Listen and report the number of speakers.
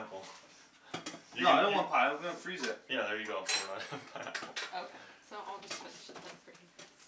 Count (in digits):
3